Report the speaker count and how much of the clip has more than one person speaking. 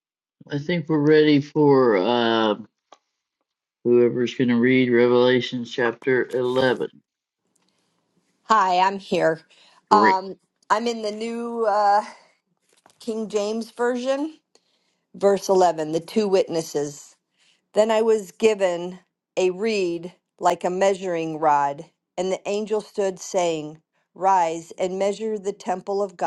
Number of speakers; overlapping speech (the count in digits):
2, about 1%